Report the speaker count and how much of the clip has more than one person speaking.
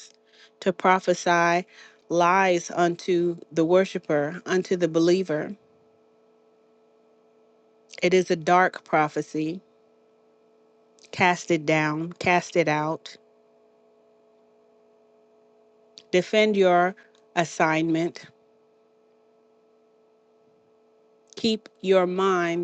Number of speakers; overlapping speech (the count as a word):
one, no overlap